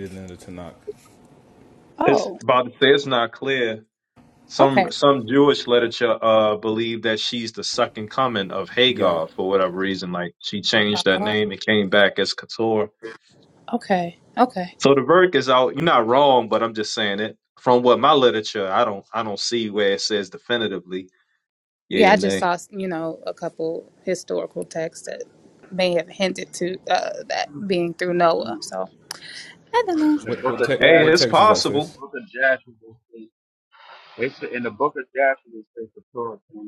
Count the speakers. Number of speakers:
4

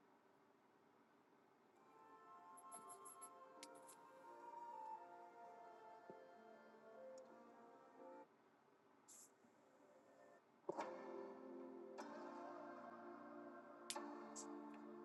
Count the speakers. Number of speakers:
0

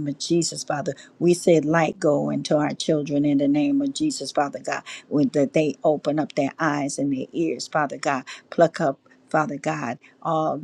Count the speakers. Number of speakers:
1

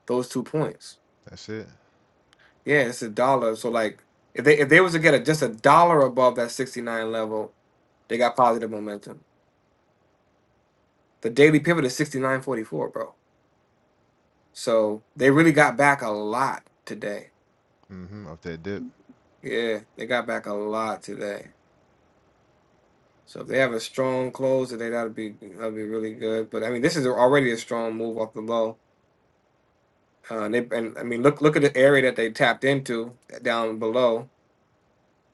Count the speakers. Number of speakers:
2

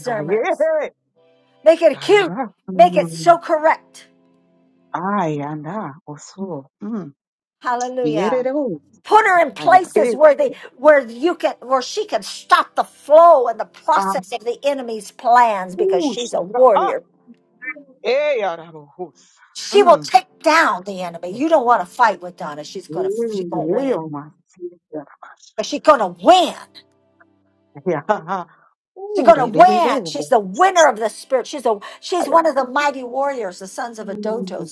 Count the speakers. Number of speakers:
2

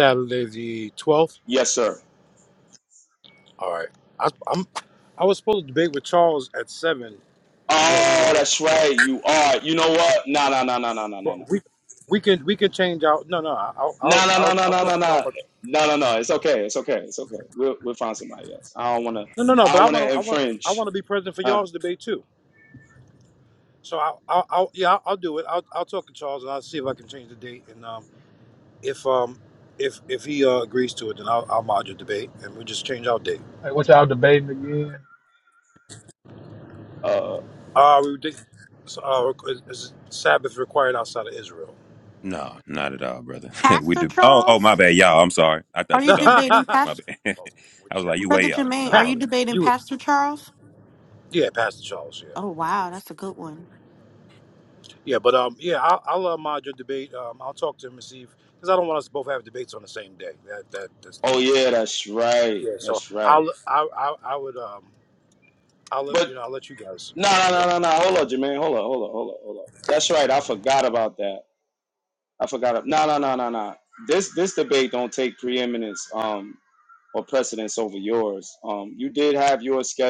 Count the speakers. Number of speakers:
5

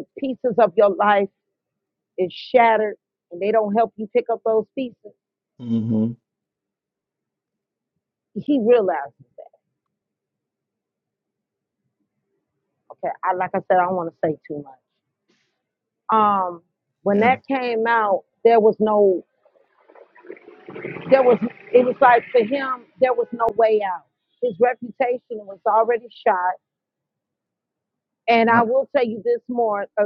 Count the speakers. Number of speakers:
2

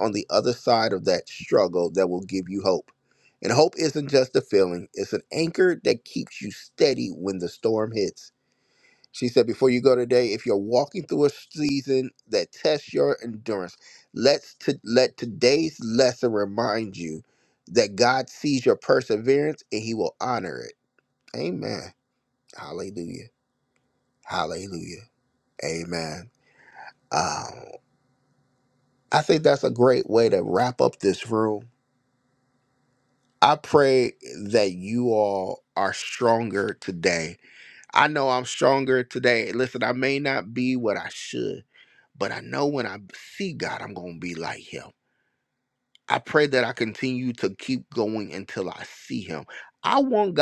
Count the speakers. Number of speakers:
1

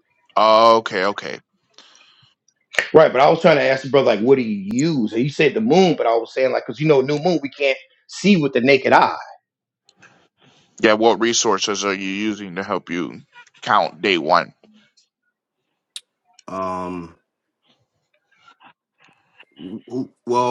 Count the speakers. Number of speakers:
3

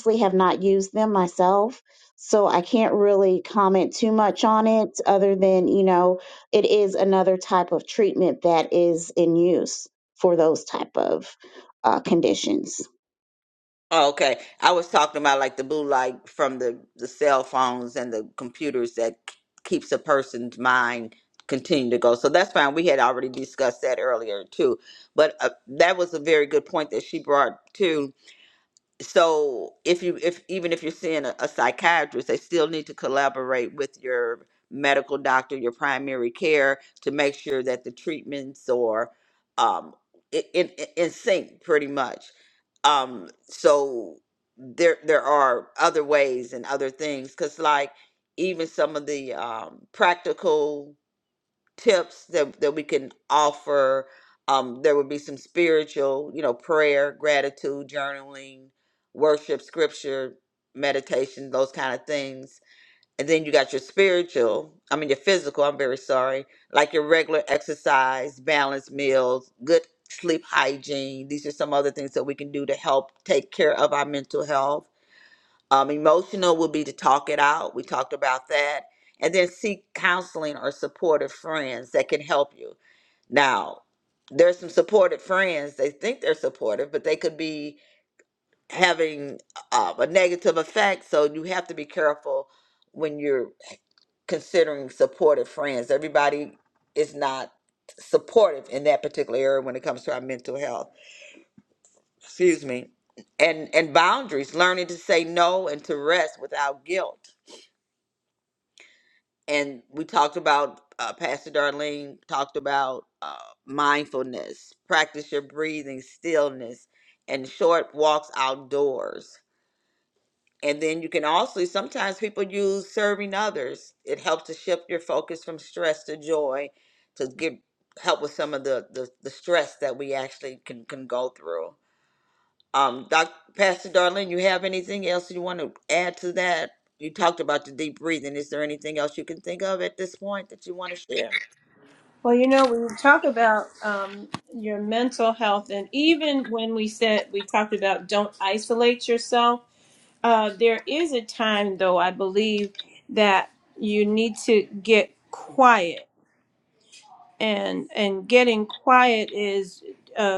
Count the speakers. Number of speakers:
3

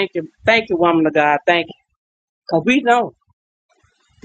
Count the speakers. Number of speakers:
1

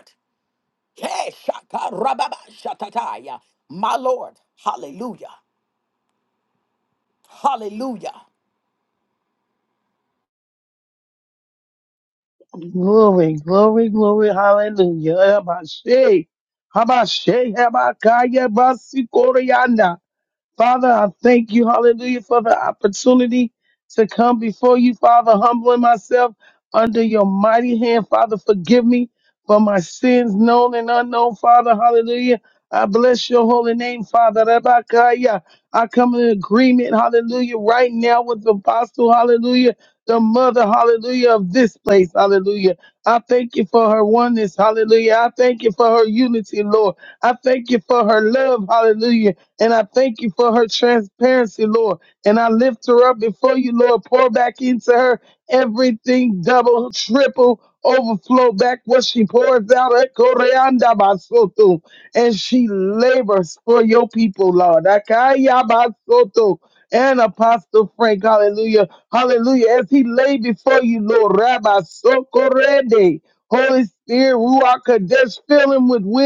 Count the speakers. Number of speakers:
2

